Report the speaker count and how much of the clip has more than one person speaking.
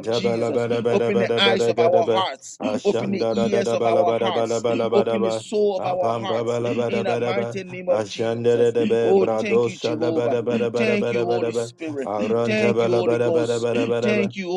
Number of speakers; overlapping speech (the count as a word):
two, about 72%